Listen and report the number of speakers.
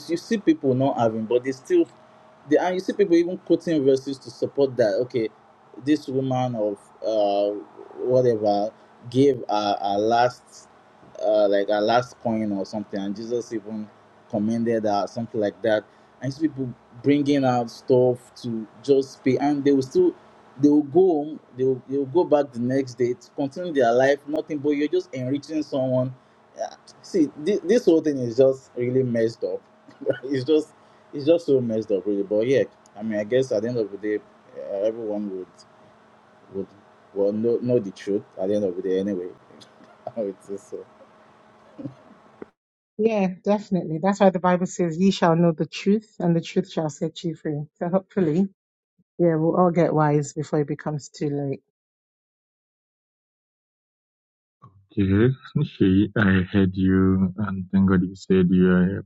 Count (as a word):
three